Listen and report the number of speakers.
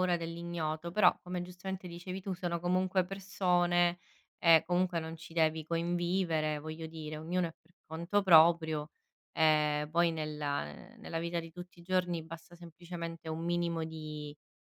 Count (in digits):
1